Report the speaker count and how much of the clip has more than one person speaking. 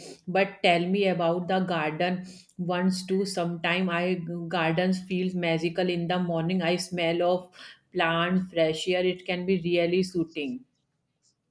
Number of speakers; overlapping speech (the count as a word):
one, no overlap